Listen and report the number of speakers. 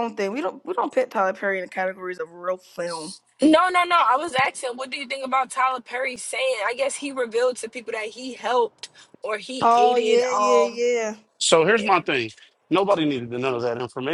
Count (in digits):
3